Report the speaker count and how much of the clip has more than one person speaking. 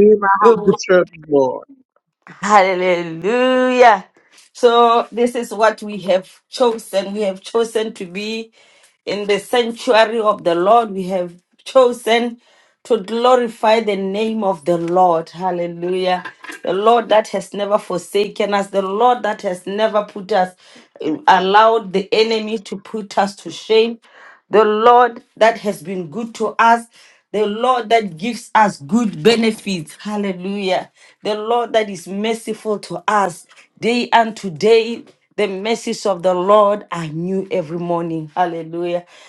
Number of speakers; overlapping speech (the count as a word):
two, no overlap